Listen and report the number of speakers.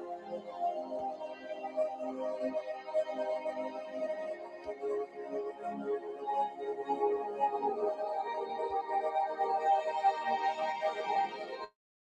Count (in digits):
0